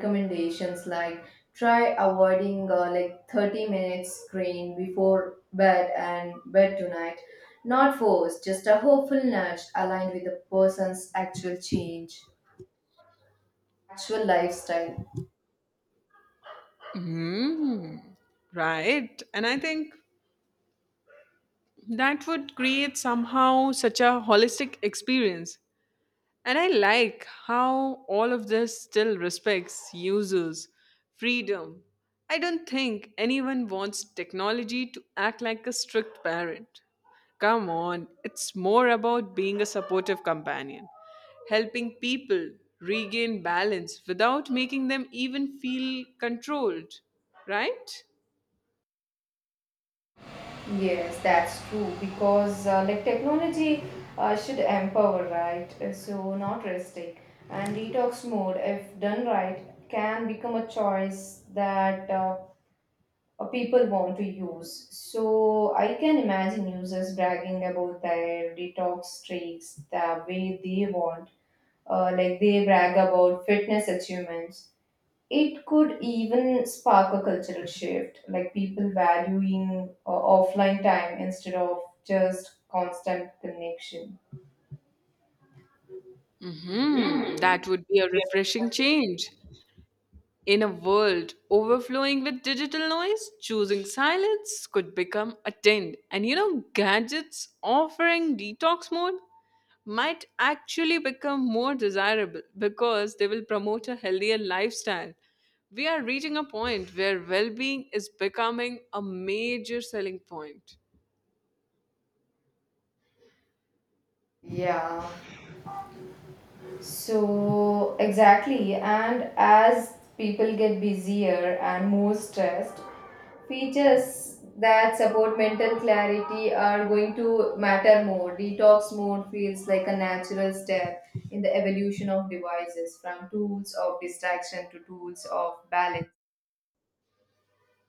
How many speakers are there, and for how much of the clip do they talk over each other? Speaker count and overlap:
two, no overlap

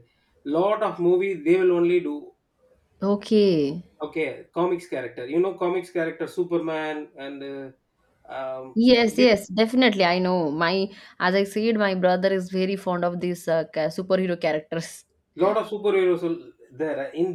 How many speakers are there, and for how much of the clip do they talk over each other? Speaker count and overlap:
two, about 1%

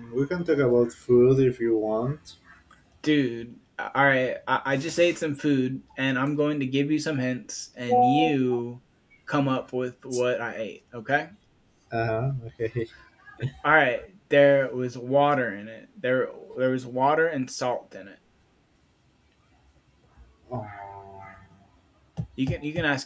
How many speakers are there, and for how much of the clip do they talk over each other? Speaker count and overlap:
two, no overlap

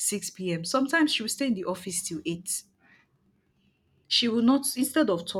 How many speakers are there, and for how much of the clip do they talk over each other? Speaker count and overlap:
one, no overlap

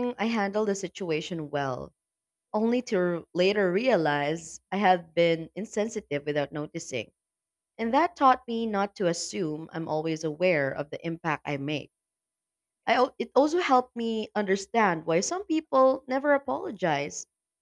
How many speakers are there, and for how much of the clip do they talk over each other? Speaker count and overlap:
one, no overlap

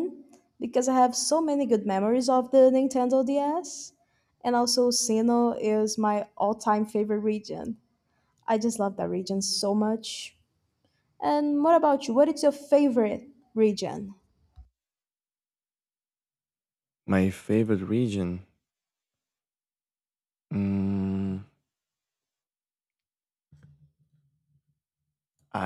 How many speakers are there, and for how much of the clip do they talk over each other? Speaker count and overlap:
two, no overlap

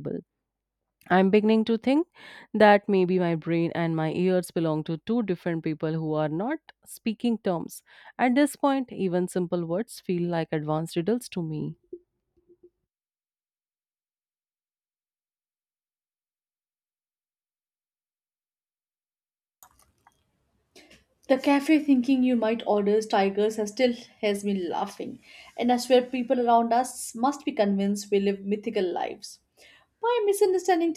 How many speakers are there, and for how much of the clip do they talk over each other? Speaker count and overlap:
two, no overlap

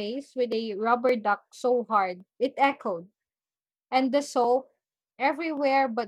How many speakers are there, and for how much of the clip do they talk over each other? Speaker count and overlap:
one, no overlap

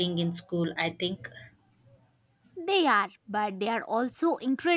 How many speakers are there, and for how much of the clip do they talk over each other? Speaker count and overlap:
two, no overlap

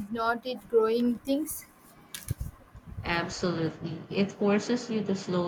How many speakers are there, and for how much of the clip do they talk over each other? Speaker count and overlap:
two, no overlap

